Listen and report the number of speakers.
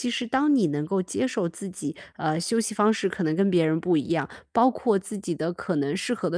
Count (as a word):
one